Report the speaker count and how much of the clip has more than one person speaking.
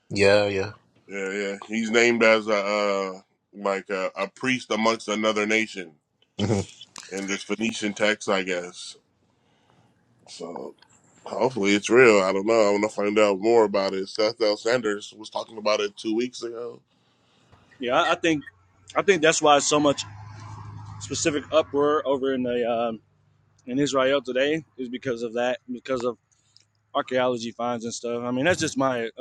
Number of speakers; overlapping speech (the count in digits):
3, about 1%